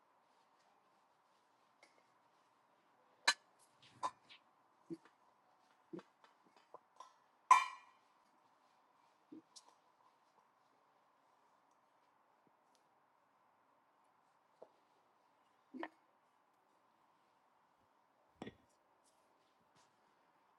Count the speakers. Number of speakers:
0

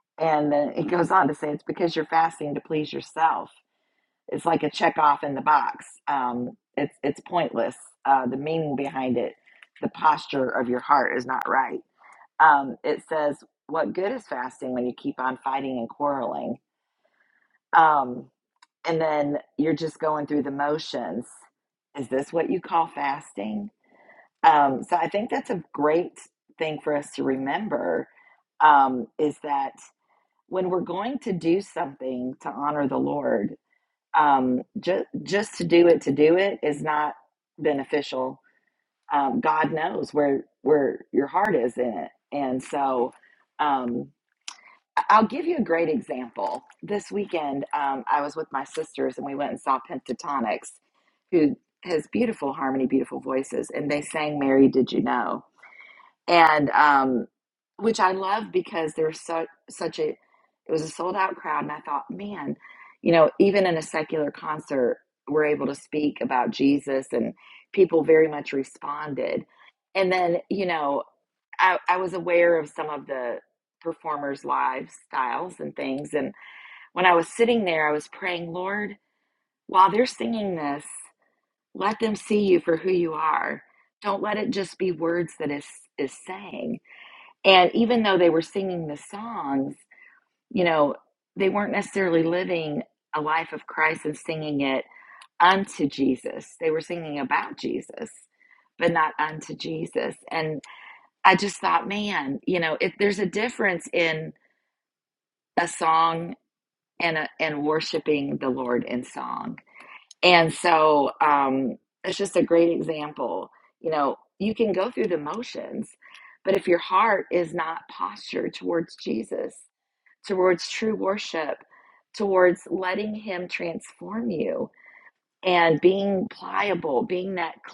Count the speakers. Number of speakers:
1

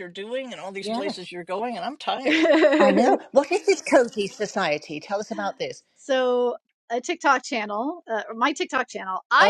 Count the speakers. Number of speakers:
3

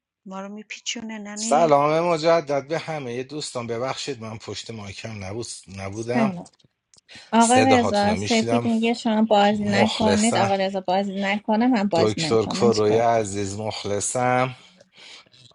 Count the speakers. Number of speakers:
3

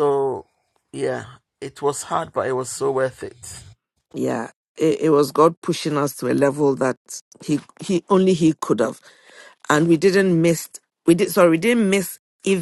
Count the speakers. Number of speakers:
2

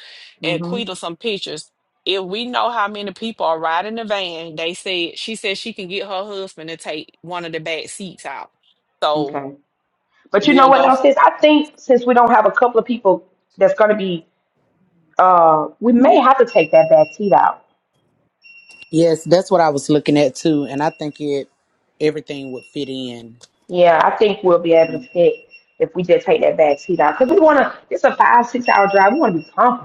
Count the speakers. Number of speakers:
3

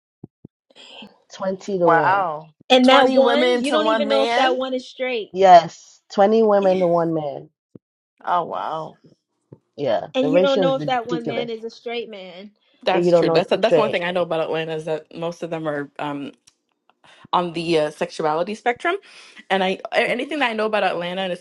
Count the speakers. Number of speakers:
4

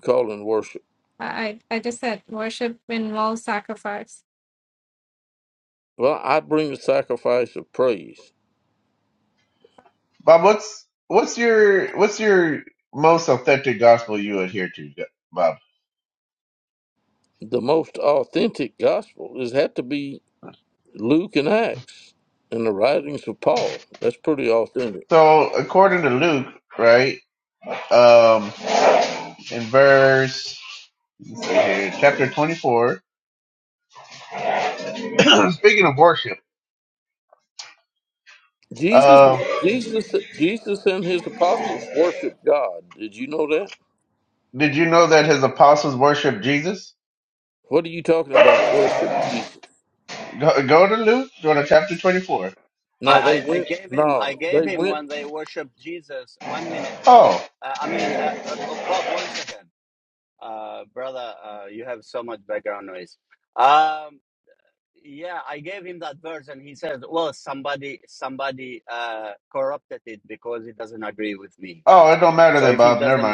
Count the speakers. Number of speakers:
4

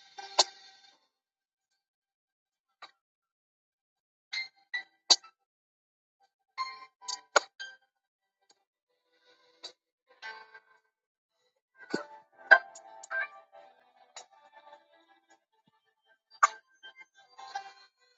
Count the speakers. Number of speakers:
0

